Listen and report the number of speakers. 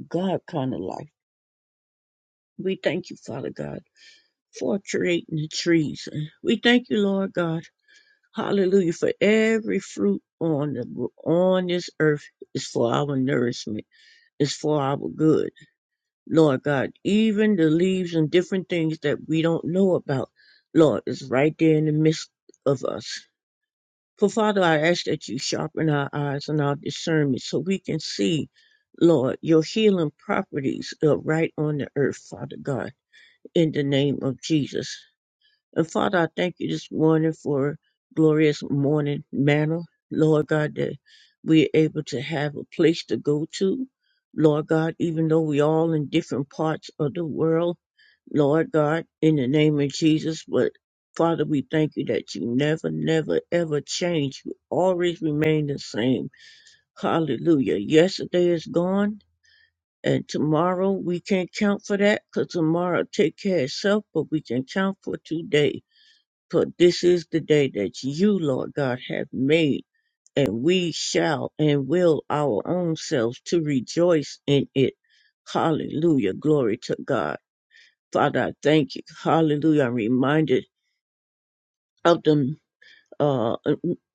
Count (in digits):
1